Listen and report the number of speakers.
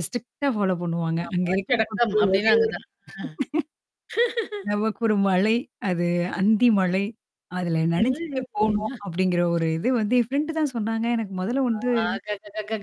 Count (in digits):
2